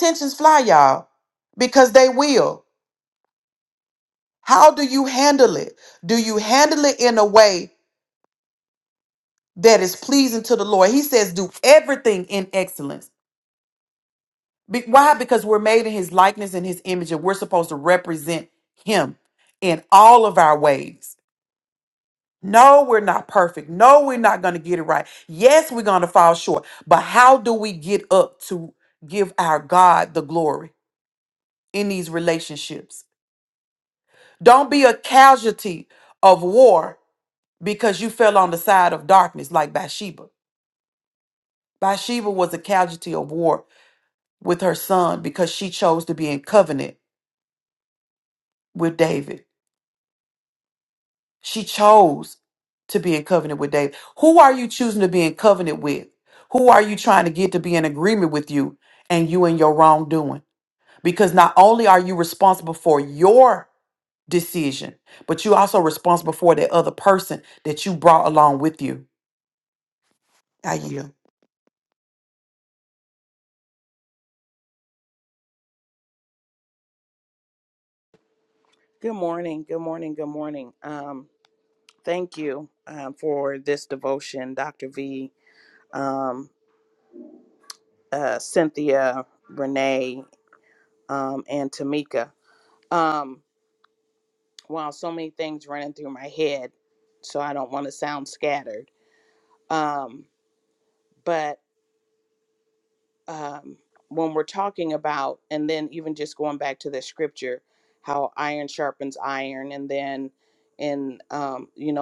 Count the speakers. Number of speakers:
2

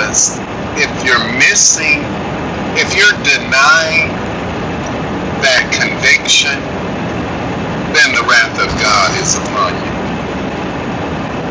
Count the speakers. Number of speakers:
1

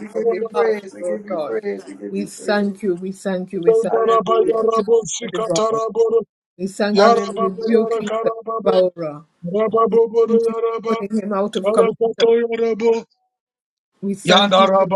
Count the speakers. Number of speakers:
3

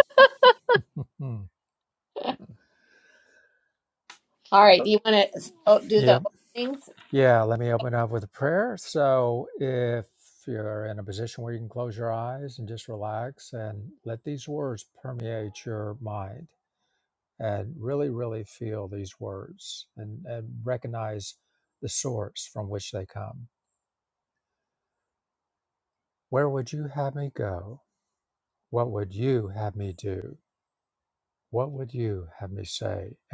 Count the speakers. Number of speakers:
2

